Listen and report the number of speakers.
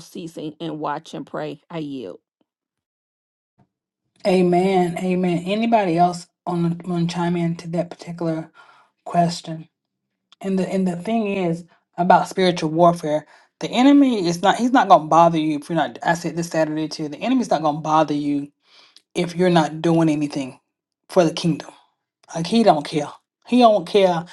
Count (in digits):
2